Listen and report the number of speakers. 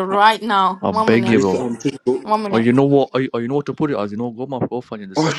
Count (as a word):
three